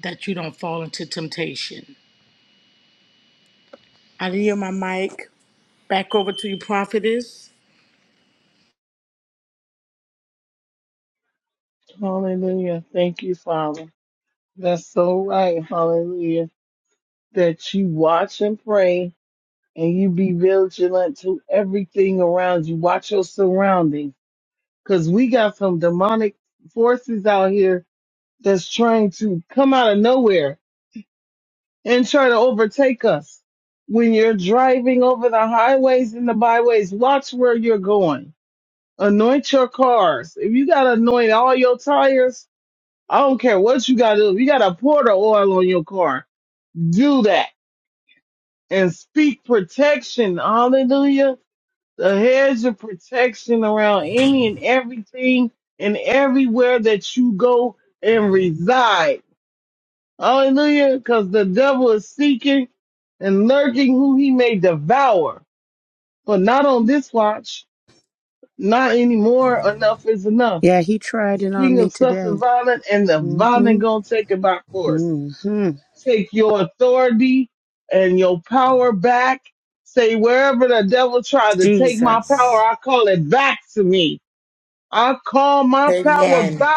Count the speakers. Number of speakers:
three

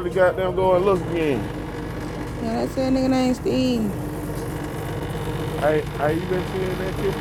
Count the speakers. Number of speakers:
three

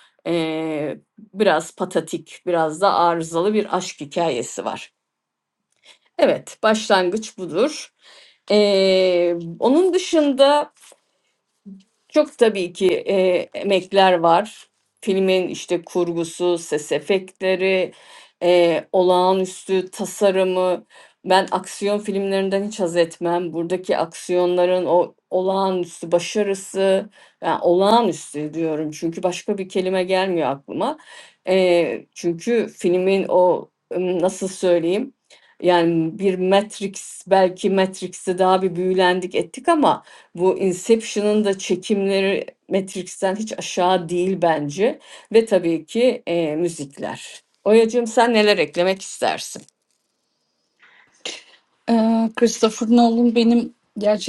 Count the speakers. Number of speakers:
two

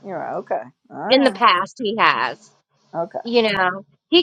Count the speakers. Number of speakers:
two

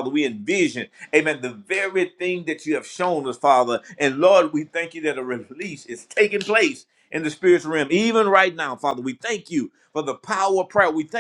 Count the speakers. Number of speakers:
one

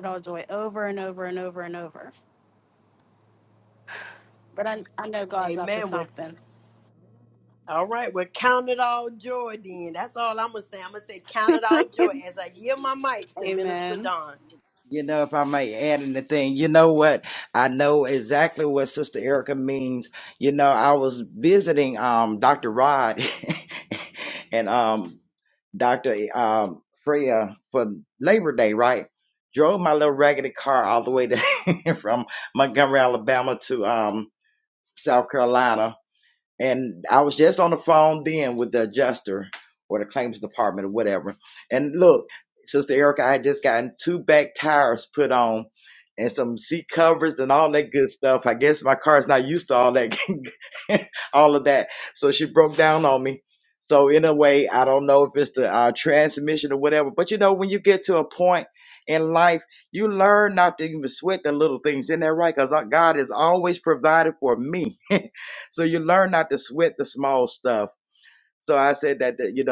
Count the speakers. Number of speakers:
three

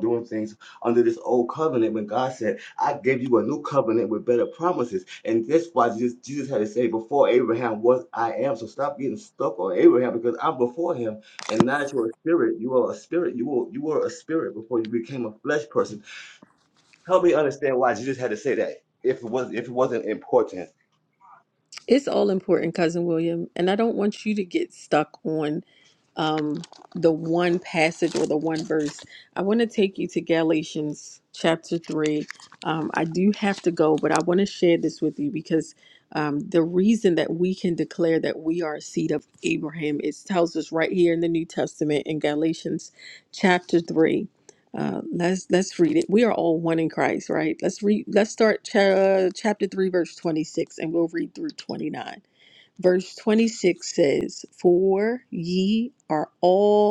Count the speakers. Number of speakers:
two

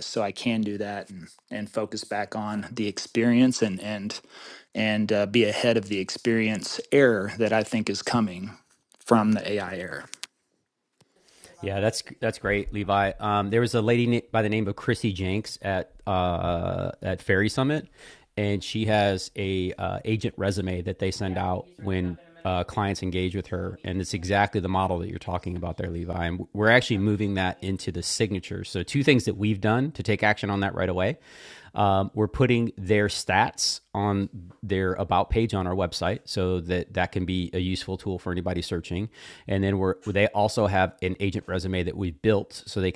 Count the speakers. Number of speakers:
two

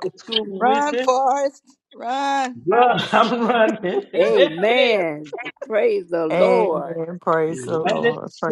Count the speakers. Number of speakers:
four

